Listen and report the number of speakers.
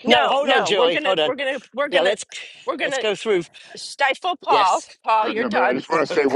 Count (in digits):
3